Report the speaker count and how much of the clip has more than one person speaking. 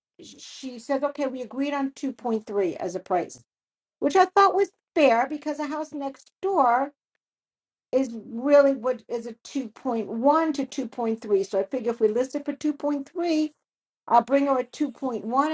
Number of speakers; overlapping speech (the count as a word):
one, no overlap